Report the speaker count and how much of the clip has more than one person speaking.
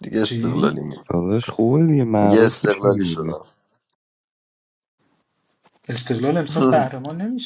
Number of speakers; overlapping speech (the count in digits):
3, about 21%